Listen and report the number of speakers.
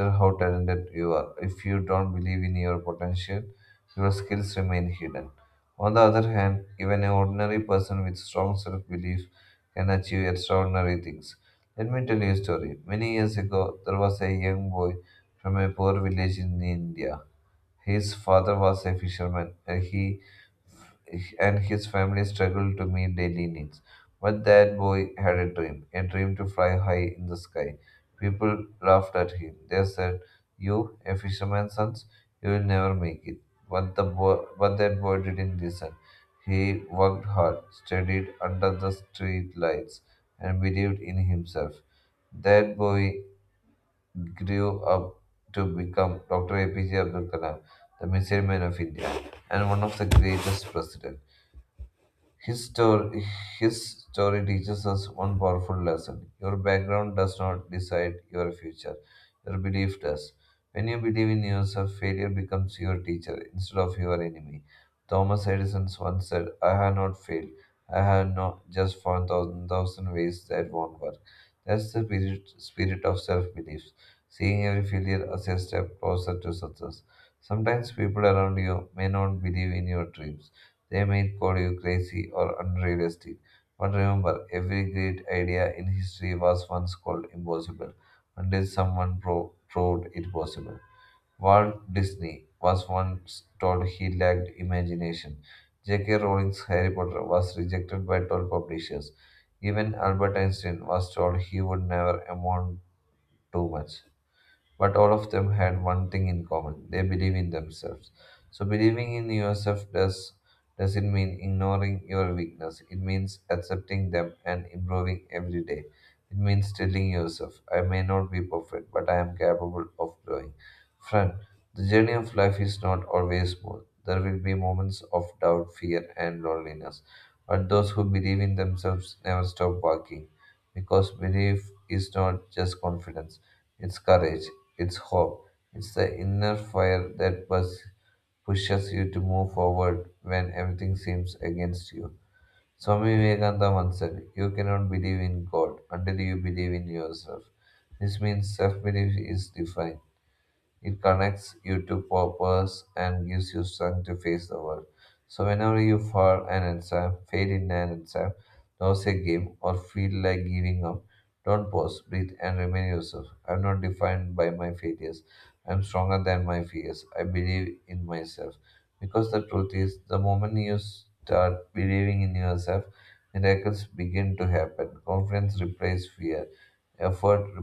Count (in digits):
1